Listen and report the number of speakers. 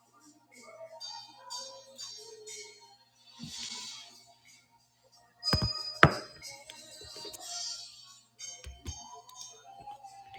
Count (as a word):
zero